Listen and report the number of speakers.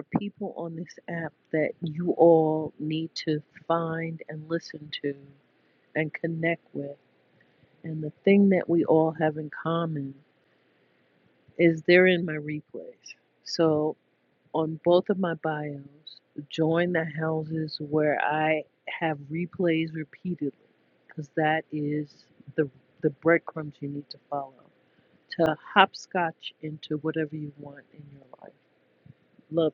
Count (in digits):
1